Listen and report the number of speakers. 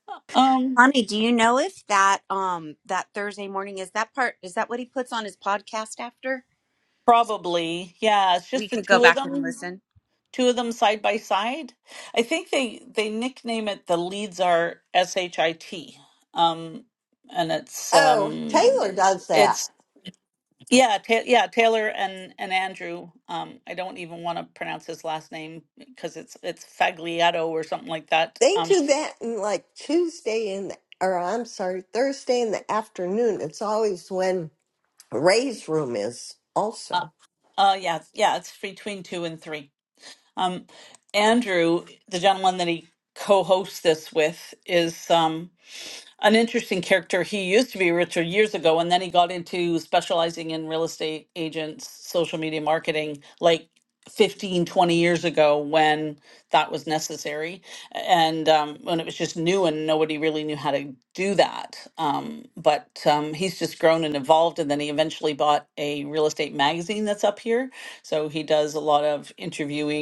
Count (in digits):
3